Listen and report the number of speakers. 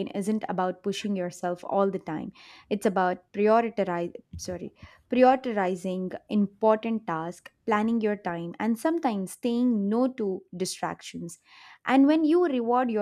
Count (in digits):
1